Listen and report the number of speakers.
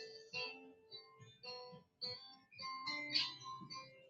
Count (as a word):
zero